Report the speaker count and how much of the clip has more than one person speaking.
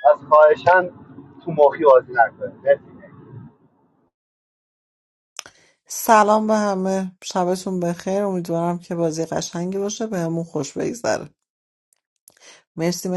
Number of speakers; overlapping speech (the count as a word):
two, no overlap